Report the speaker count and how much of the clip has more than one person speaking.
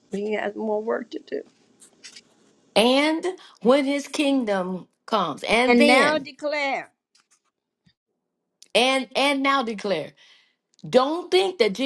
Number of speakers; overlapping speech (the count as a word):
two, about 5%